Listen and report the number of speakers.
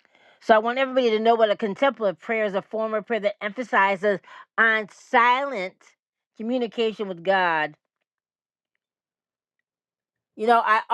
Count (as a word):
one